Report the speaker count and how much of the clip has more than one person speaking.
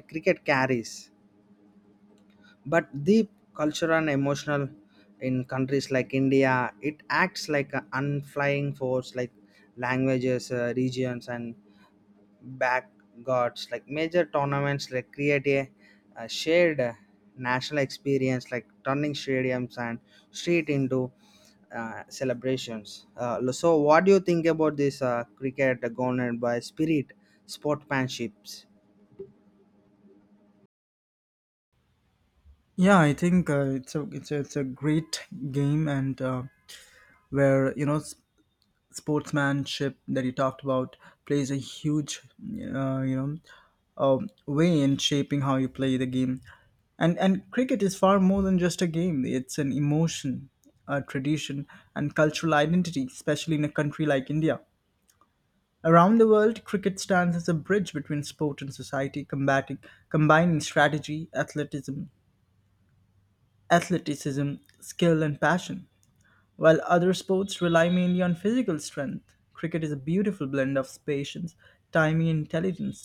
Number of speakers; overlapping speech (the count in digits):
2, no overlap